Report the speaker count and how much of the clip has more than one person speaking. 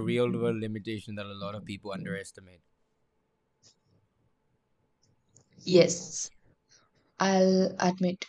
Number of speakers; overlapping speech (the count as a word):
two, no overlap